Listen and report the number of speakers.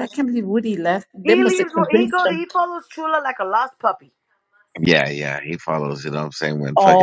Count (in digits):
3